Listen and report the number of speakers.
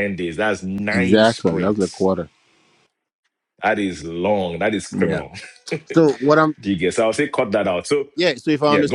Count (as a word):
two